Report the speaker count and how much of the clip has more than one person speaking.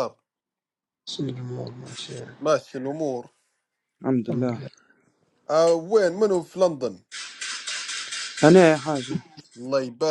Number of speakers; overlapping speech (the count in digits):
3, about 3%